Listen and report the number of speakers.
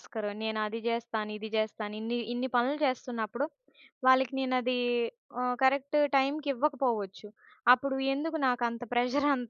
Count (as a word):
one